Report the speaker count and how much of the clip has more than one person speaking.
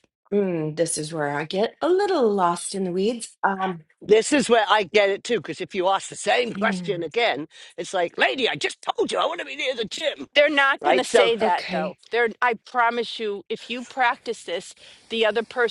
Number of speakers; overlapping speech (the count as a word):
three, about 9%